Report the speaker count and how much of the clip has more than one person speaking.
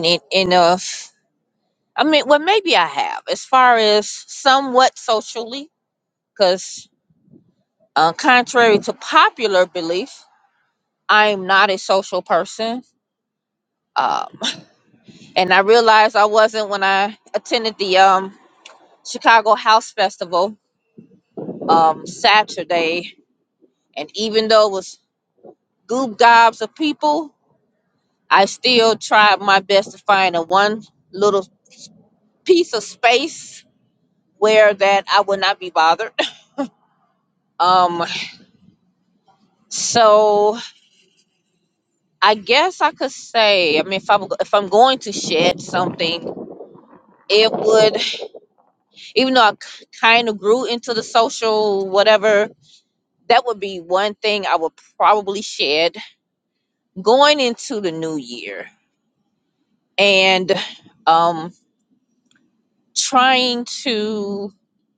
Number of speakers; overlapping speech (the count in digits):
1, no overlap